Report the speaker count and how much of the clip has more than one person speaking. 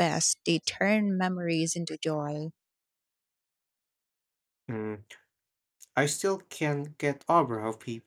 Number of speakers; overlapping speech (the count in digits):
2, no overlap